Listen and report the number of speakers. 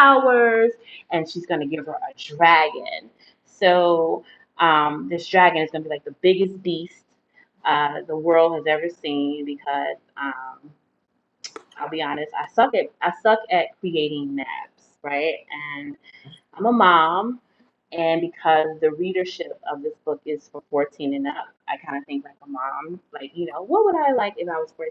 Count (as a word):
one